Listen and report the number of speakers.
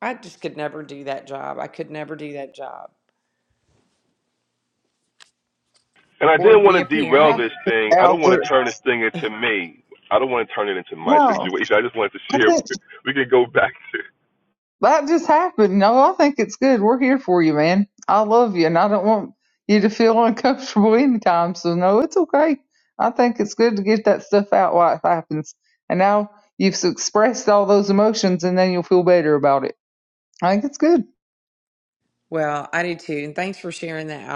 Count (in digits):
3